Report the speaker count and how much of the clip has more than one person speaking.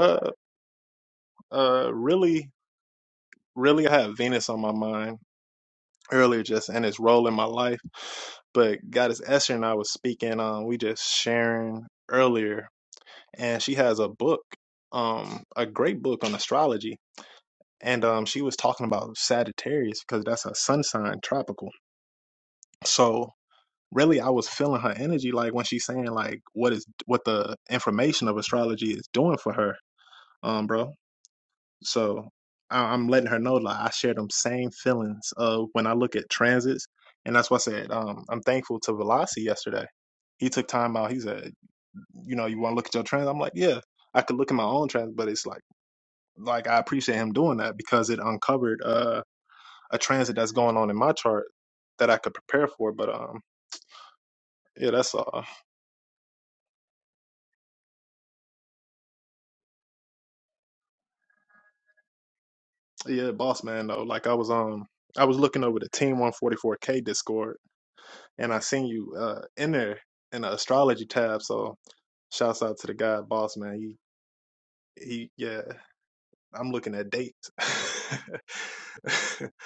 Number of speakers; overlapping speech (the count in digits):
1, no overlap